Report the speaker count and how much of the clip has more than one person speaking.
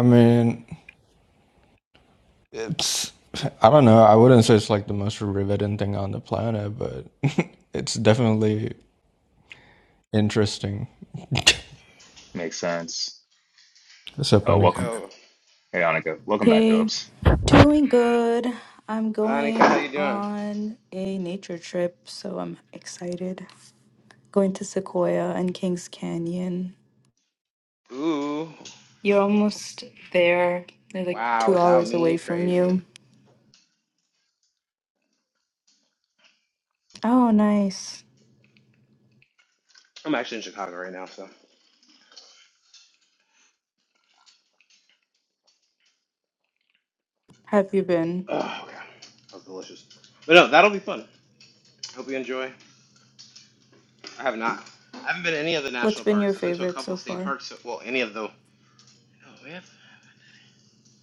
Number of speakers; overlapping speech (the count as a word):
four, about 8%